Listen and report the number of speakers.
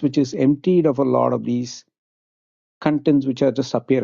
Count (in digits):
1